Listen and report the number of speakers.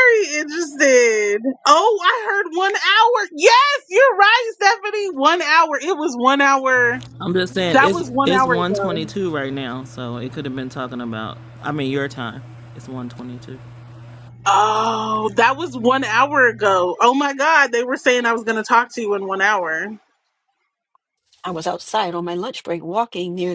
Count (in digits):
3